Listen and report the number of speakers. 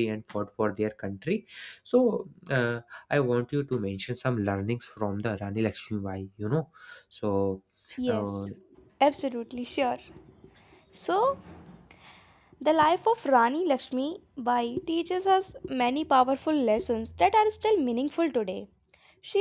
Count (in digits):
2